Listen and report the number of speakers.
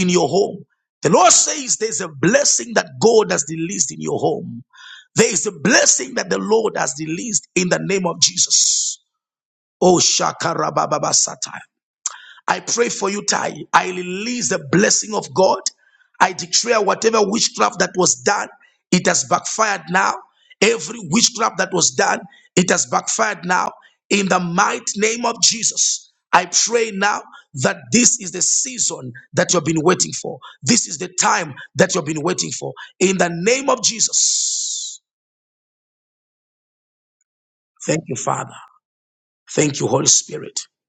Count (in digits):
1